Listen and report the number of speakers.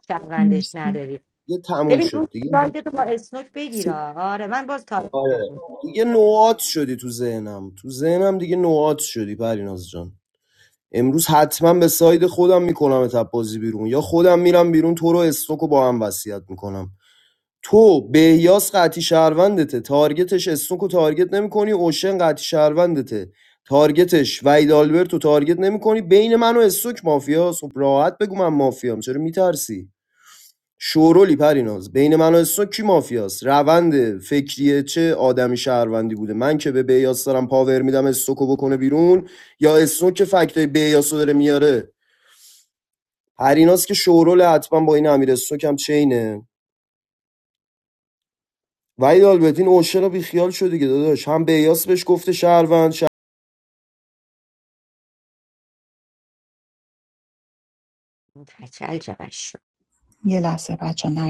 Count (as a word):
three